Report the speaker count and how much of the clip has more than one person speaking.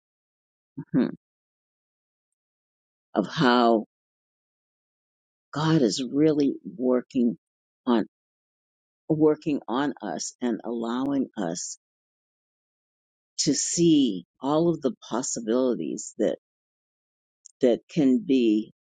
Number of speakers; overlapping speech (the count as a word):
one, no overlap